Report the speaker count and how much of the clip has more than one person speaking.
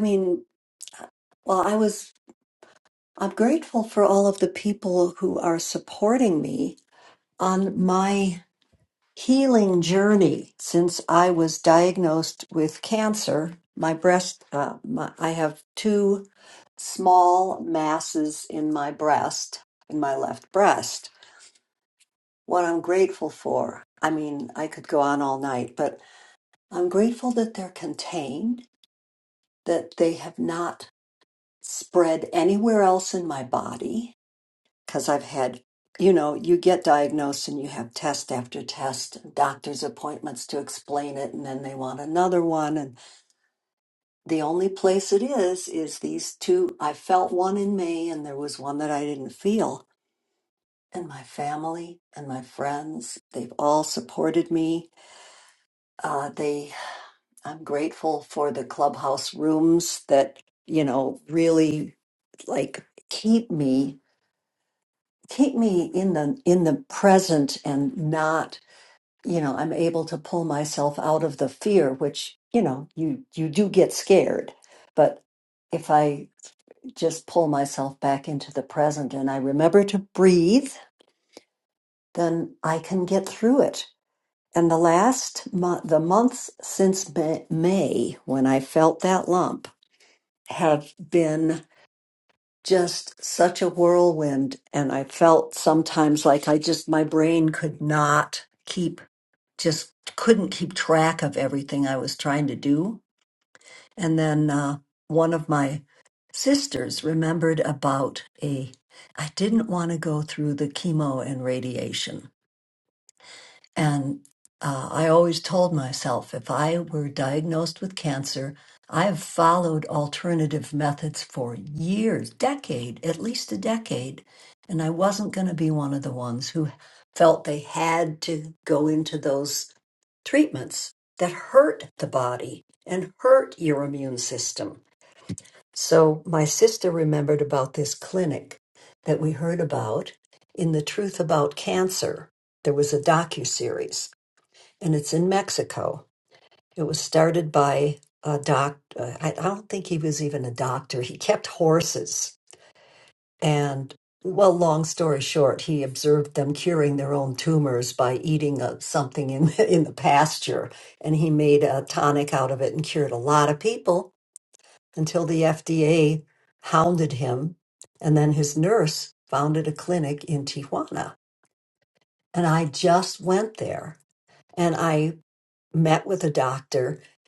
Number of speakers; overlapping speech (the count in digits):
1, no overlap